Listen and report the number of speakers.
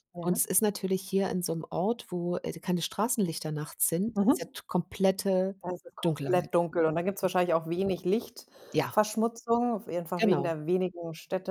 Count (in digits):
2